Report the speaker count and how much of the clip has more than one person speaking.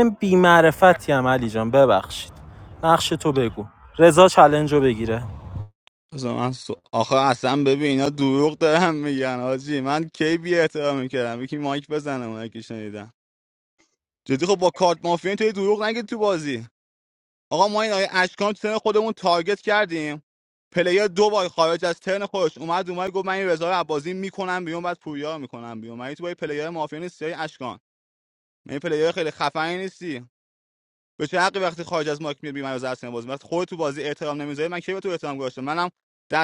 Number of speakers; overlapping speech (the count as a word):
two, no overlap